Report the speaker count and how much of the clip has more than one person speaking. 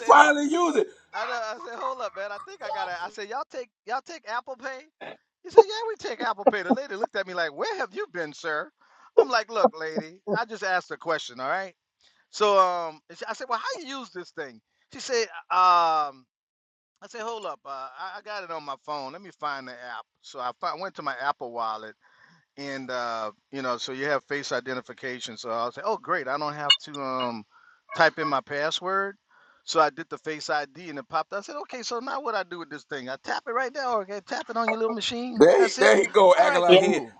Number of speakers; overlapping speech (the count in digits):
2, about 4%